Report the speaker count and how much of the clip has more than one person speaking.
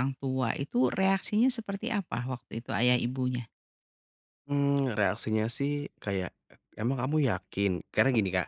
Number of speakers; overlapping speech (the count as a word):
two, no overlap